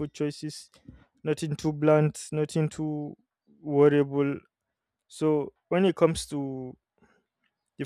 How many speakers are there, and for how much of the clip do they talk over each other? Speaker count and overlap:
one, no overlap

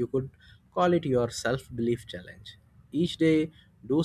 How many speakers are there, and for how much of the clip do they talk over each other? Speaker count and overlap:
one, no overlap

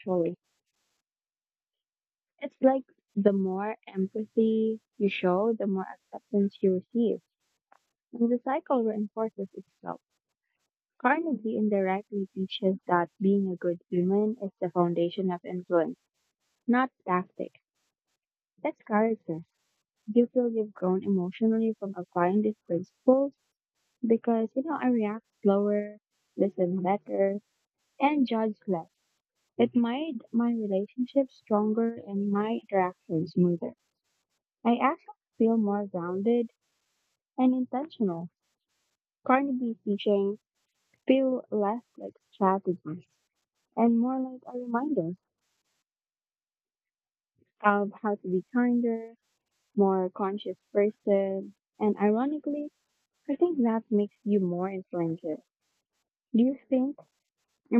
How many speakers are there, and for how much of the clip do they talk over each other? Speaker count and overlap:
one, no overlap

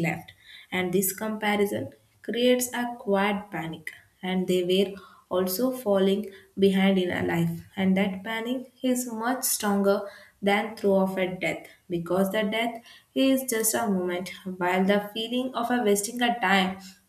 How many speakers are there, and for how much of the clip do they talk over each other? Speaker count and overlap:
one, no overlap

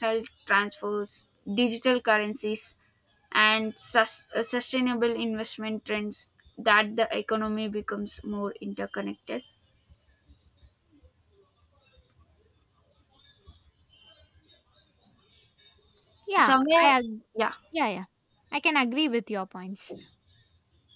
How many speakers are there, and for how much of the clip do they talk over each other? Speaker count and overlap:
two, about 3%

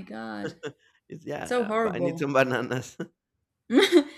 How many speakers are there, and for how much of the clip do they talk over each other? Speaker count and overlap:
two, about 17%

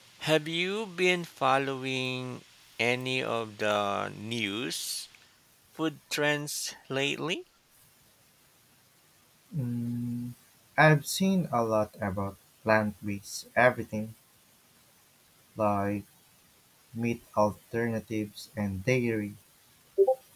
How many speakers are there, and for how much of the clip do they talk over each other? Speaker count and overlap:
two, no overlap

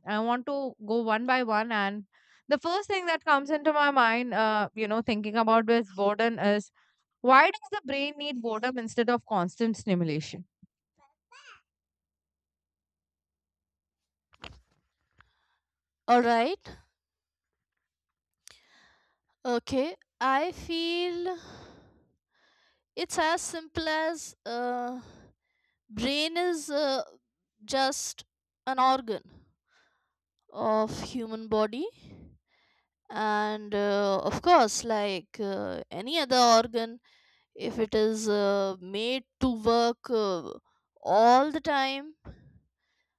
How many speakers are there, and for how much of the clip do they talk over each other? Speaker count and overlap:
two, no overlap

